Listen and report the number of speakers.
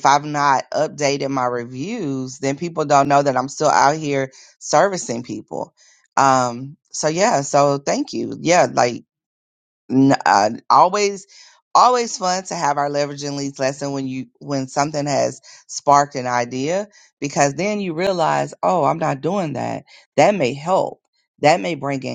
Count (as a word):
one